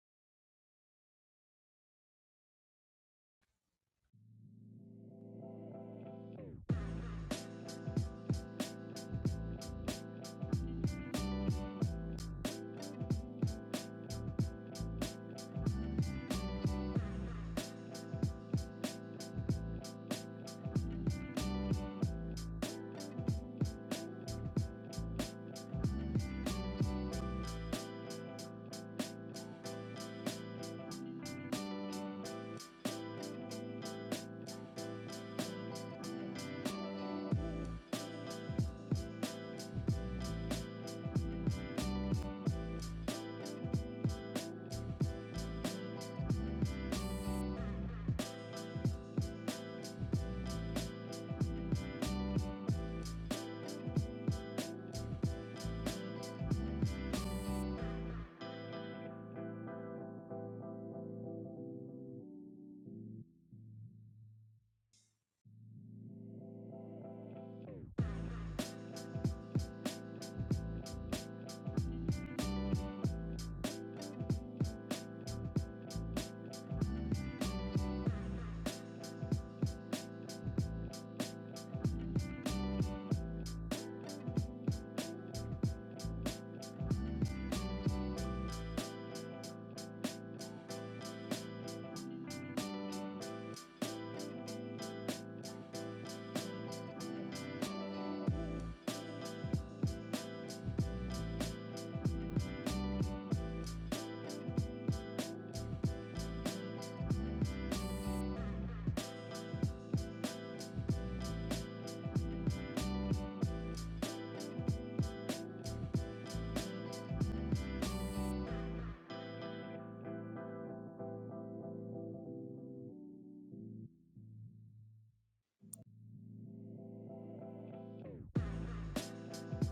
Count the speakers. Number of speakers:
zero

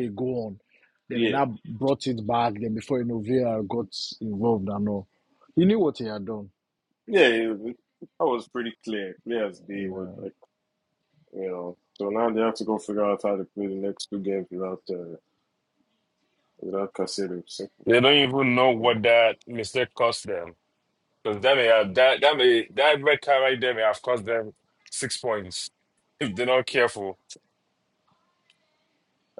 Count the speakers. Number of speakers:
three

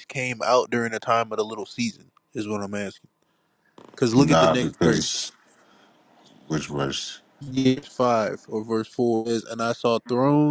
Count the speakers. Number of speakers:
two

